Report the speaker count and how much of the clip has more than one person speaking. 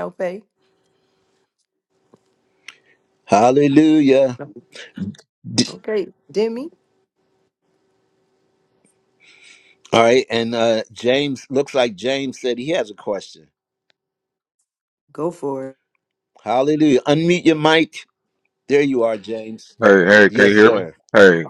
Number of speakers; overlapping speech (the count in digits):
3, about 3%